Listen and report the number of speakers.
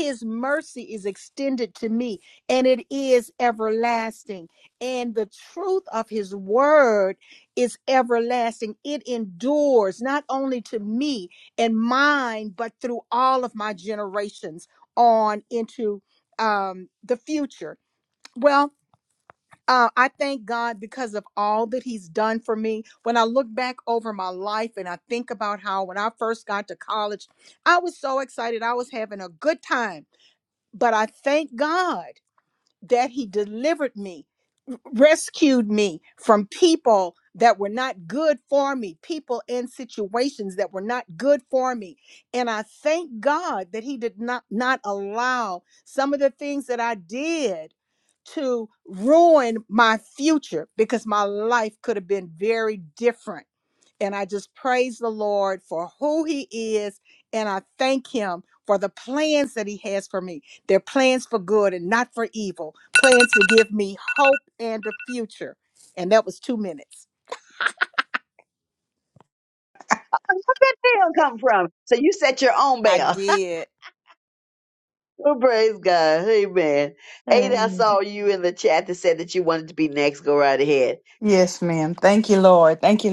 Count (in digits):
3